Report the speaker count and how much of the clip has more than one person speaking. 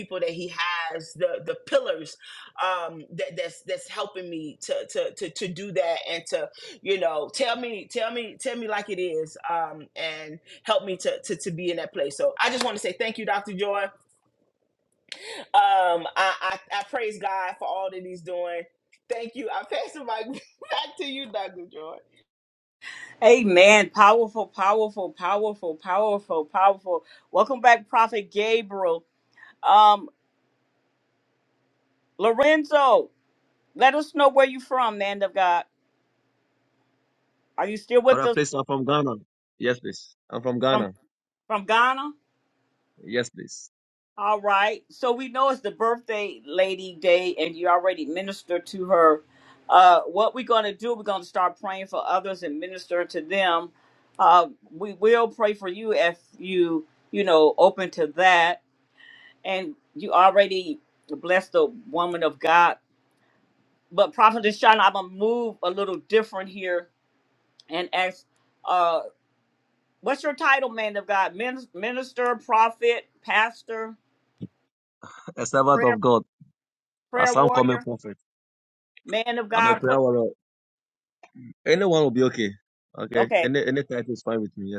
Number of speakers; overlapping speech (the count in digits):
3, about 2%